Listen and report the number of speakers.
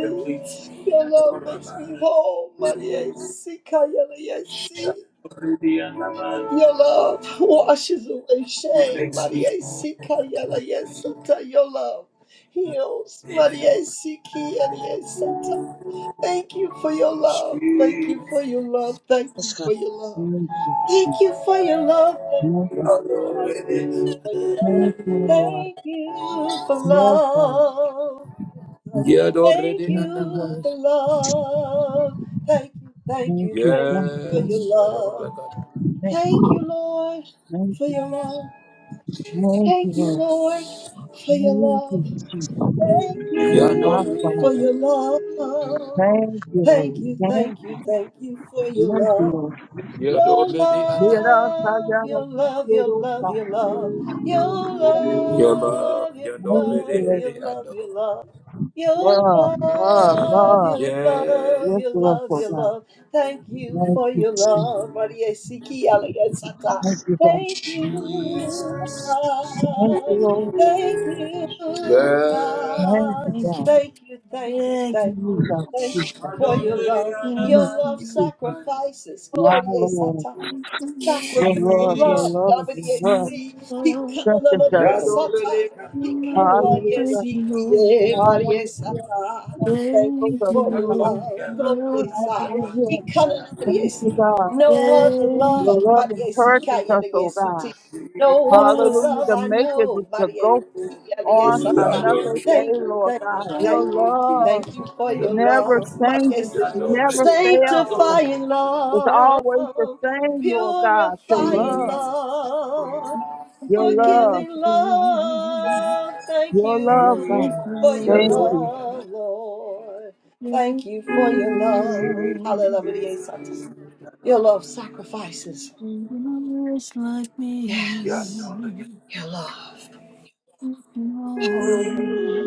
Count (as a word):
four